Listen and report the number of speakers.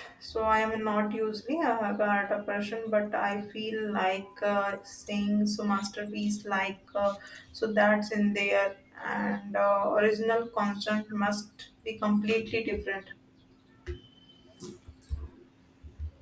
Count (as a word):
one